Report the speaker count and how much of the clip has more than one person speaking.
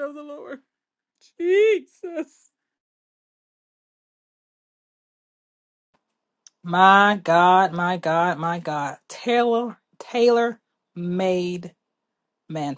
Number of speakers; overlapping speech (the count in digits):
2, no overlap